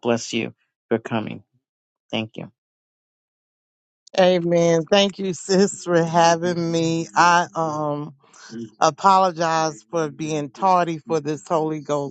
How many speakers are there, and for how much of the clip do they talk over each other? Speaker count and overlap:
two, no overlap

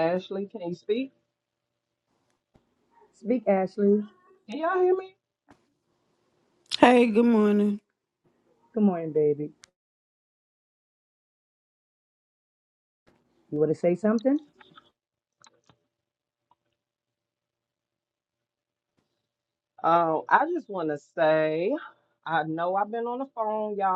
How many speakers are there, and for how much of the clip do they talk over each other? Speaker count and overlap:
three, no overlap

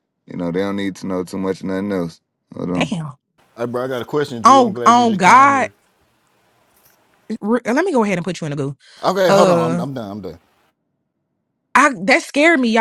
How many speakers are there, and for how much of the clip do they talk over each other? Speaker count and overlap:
three, about 15%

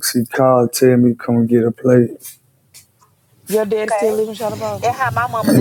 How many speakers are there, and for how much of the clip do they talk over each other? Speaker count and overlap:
three, about 9%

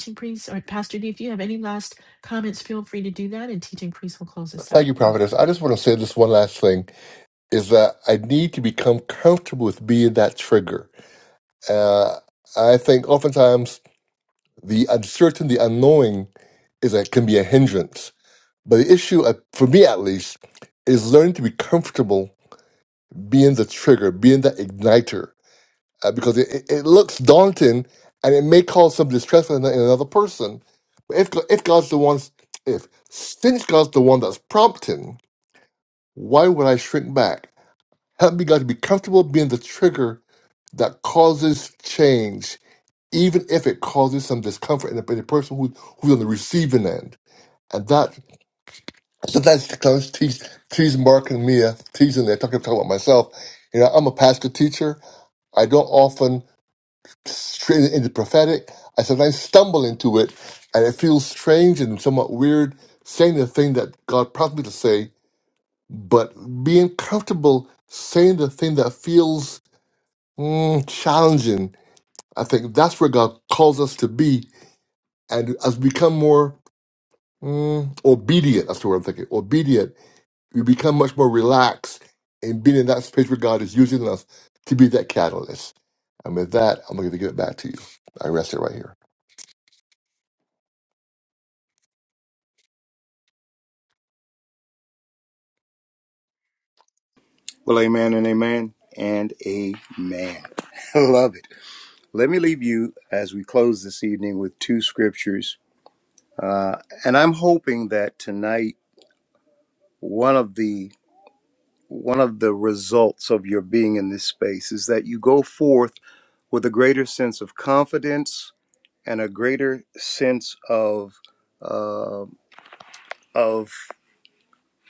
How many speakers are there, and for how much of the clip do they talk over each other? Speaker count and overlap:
three, about 1%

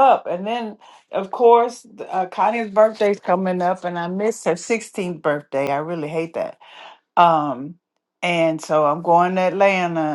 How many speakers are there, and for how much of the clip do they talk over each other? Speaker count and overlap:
one, no overlap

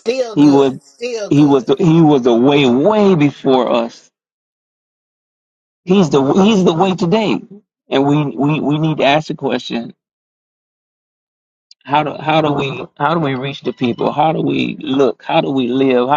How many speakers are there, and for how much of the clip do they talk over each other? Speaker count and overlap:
two, about 5%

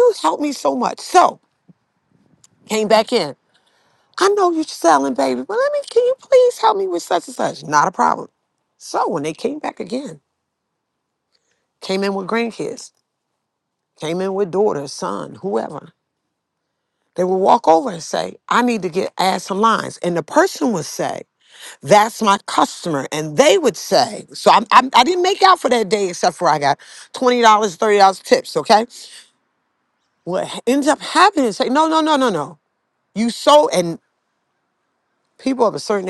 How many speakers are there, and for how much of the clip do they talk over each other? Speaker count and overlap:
one, no overlap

